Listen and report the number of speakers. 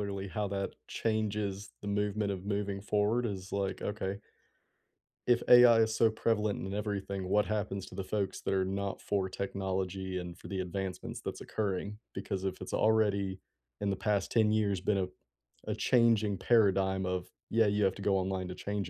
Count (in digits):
1